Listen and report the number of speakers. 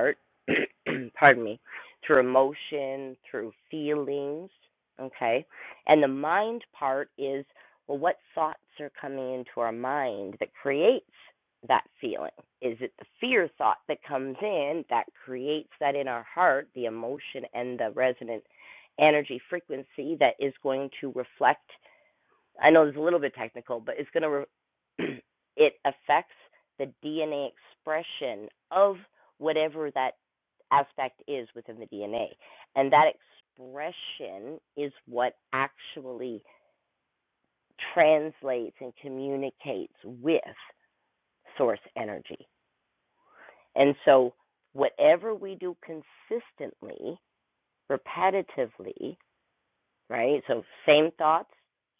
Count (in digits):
1